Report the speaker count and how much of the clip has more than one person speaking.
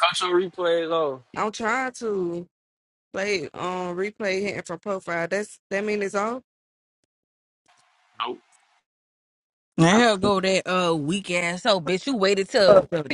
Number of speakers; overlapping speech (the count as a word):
three, about 4%